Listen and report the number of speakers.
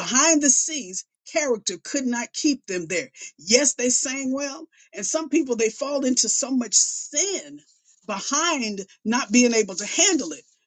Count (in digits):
1